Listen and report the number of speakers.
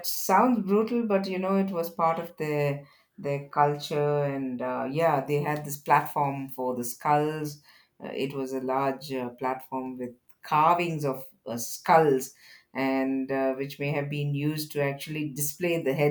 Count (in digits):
1